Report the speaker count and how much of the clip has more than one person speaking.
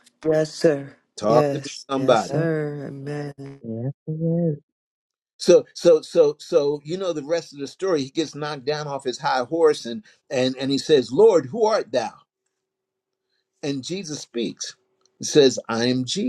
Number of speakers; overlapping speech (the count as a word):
three, about 8%